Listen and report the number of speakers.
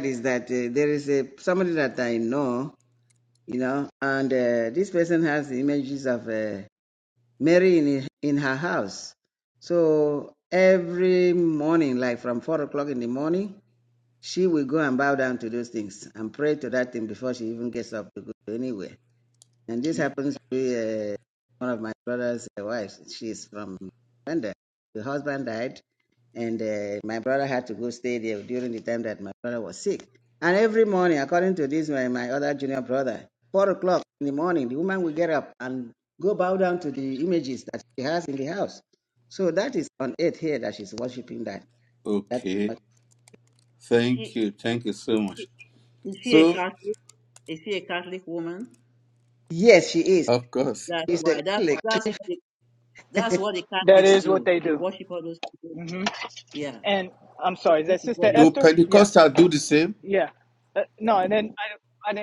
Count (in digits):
4